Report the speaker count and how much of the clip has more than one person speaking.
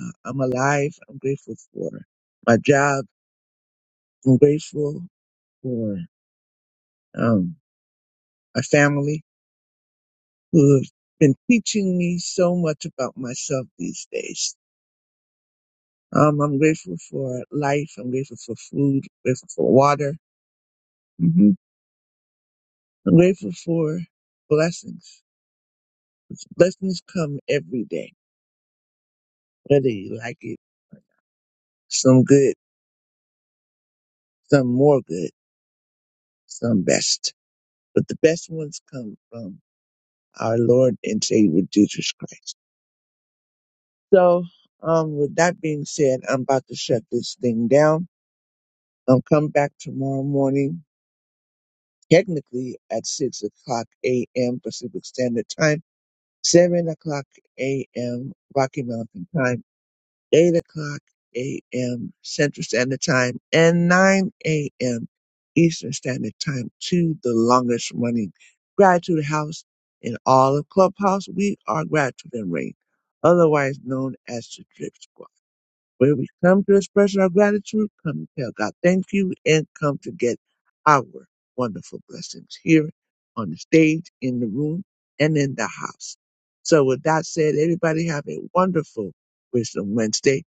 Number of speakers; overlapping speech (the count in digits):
1, no overlap